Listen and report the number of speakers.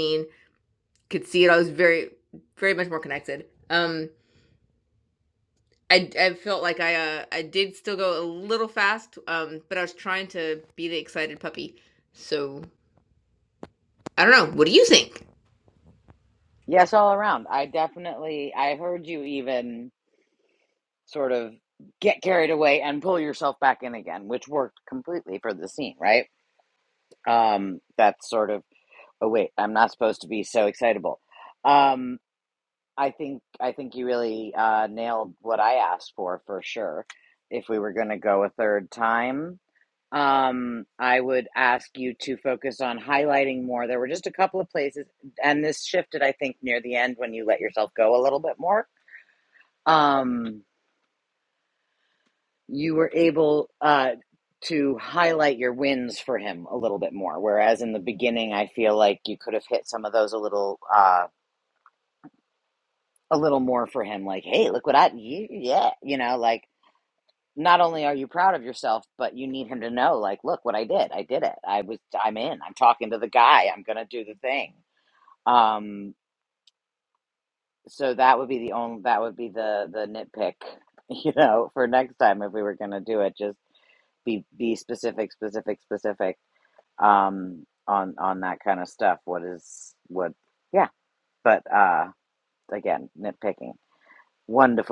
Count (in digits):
2